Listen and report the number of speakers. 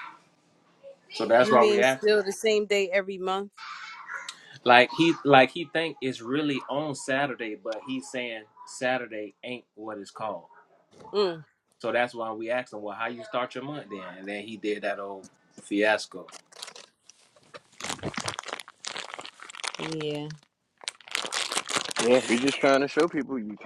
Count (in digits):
3